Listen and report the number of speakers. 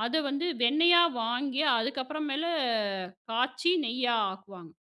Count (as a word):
one